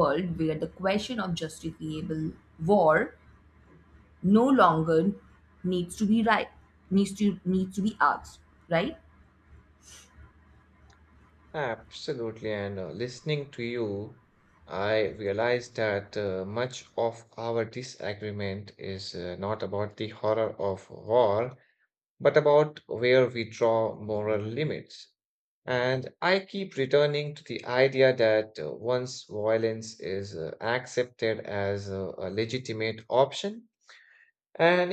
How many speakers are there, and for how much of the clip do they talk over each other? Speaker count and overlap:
2, no overlap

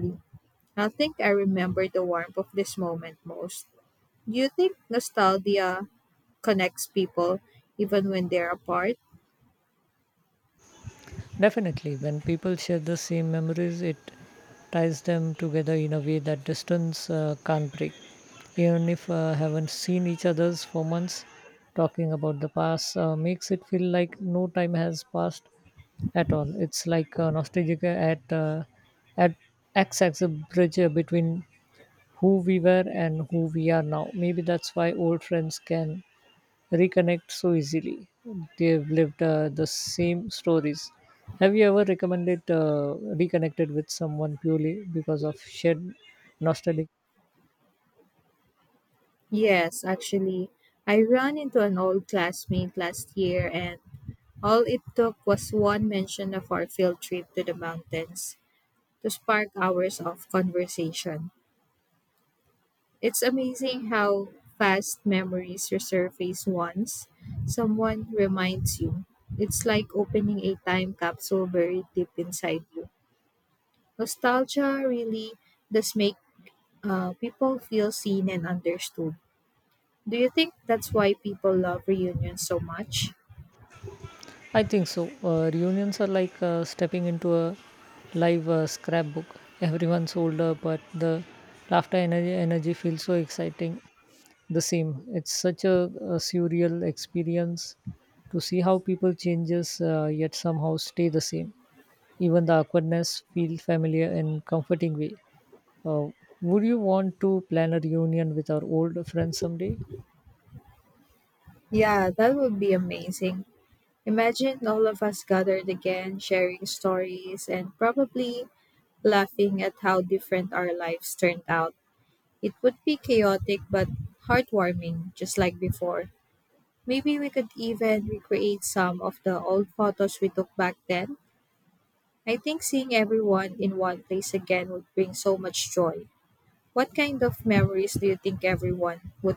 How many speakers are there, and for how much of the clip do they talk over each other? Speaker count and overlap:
2, no overlap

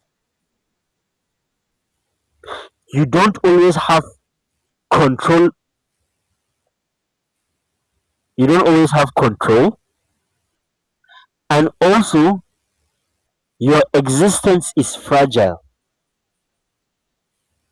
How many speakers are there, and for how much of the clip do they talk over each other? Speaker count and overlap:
1, no overlap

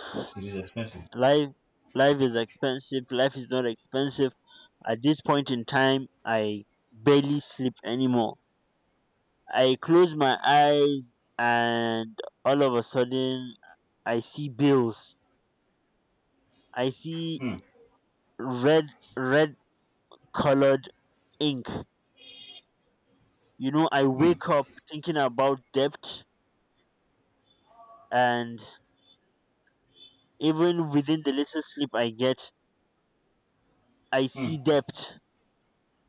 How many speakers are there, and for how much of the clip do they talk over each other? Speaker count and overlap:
2, about 1%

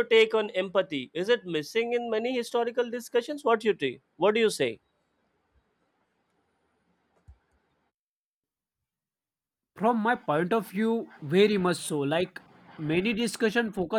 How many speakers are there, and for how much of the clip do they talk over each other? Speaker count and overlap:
2, no overlap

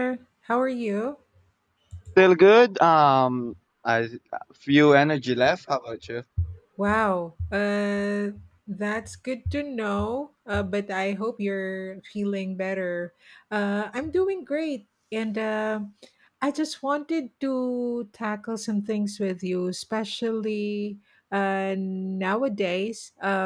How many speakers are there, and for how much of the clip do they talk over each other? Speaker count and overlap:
2, no overlap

